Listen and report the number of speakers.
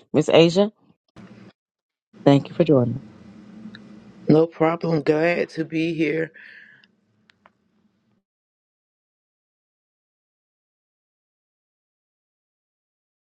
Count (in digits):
2